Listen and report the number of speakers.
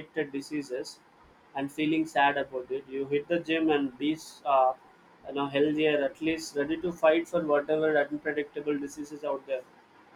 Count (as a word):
one